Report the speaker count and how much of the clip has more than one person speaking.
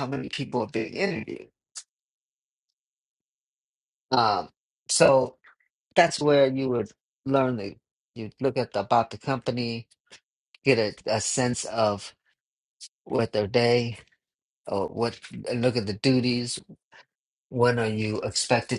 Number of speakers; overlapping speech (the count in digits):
1, no overlap